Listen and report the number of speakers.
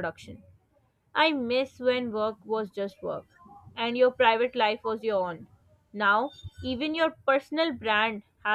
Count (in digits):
1